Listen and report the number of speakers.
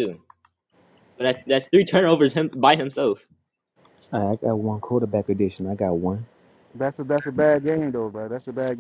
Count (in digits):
3